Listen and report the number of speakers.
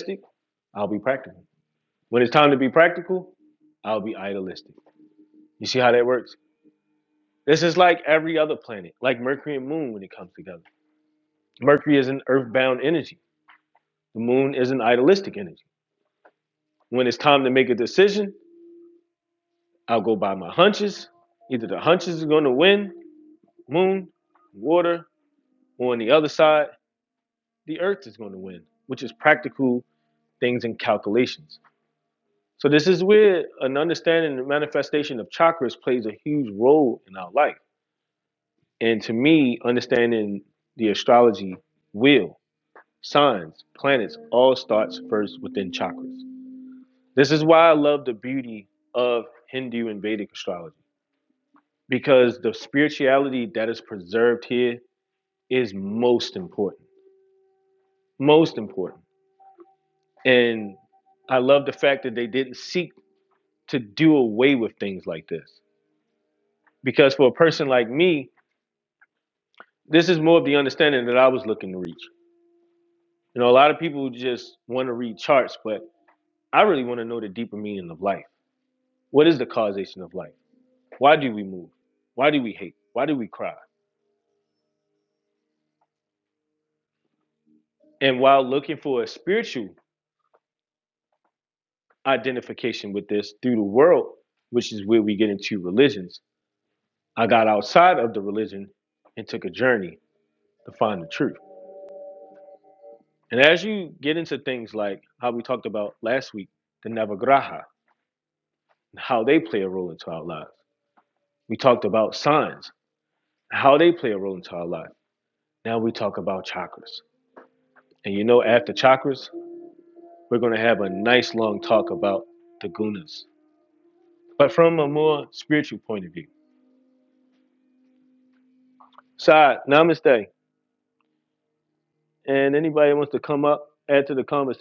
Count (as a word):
one